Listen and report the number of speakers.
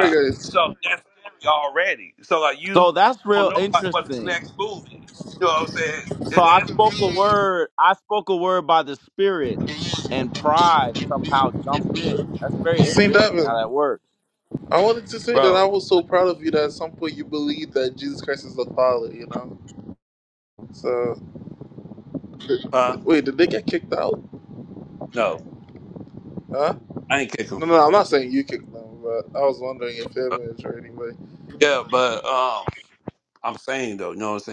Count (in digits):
3